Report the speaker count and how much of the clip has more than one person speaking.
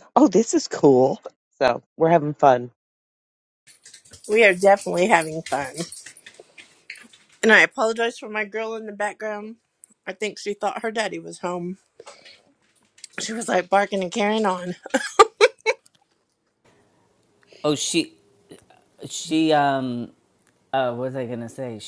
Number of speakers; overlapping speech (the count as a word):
three, no overlap